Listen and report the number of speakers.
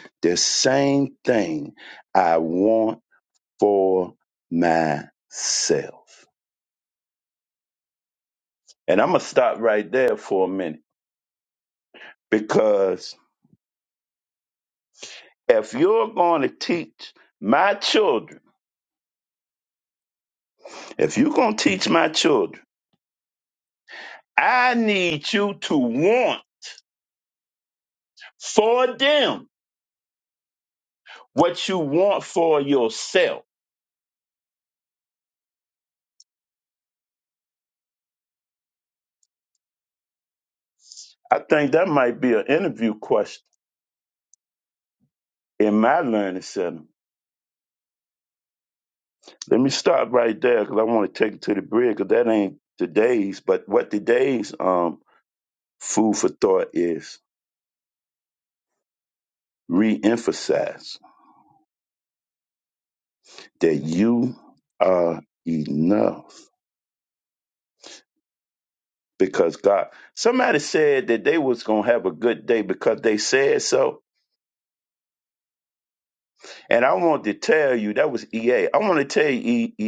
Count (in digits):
1